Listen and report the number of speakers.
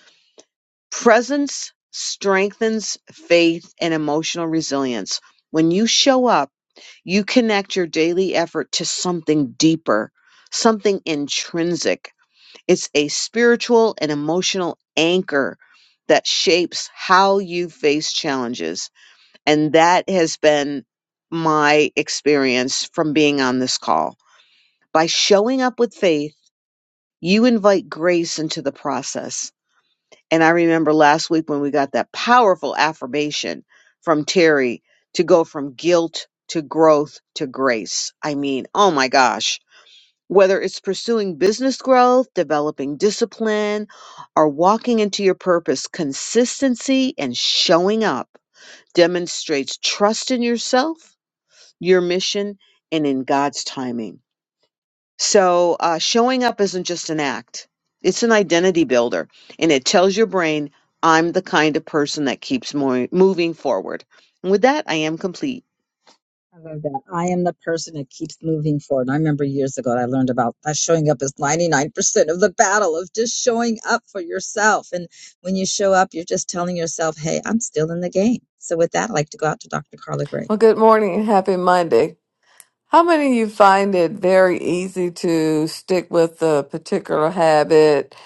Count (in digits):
3